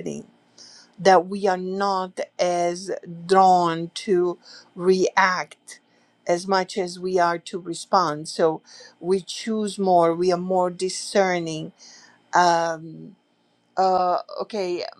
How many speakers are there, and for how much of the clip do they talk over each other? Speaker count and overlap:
one, no overlap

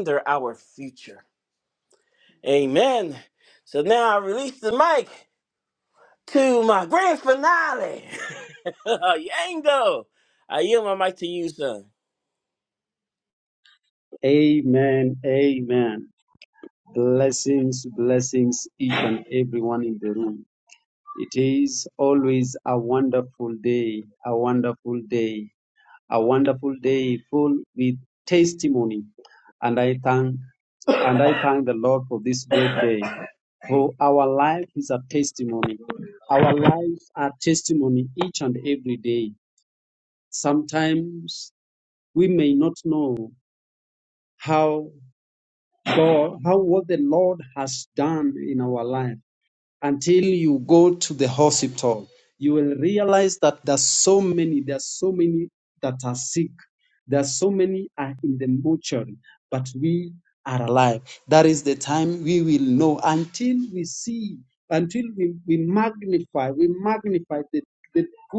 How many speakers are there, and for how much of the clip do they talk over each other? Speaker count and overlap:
two, no overlap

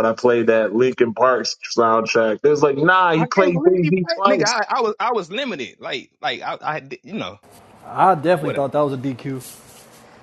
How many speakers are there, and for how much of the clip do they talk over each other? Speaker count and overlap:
three, about 15%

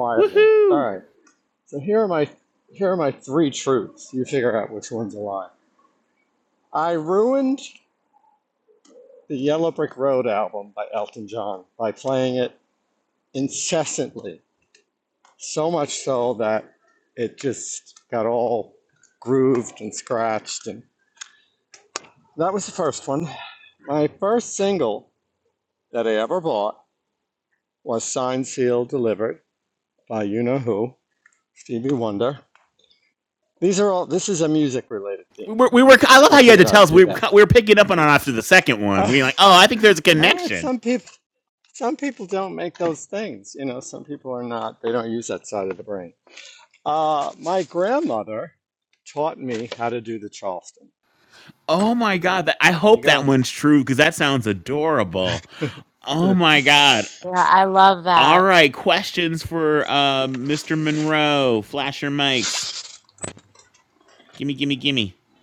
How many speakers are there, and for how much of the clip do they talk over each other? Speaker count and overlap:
three, about 5%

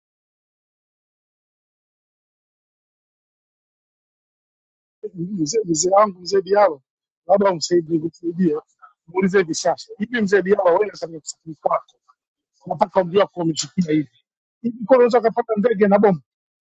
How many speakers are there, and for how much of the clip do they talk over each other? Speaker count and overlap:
one, no overlap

